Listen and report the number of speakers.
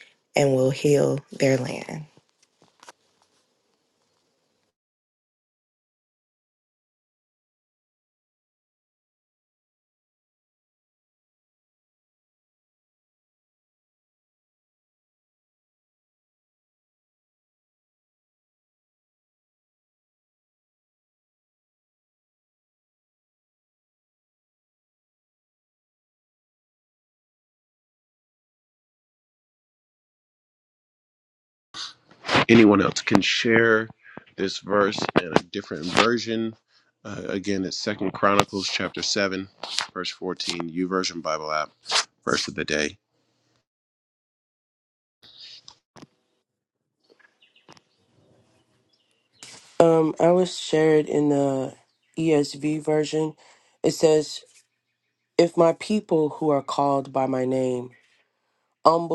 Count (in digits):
3